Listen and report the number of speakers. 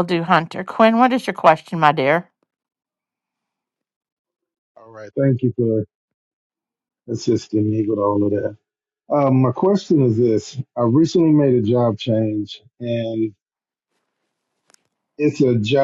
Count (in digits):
2